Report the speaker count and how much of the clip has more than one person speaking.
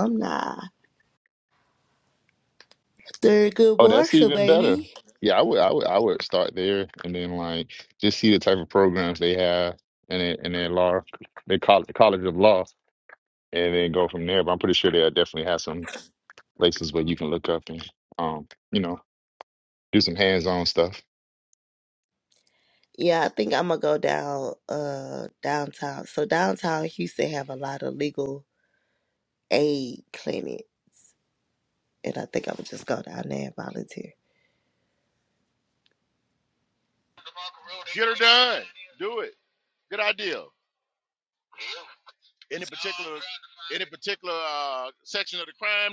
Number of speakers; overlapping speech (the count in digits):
3, about 2%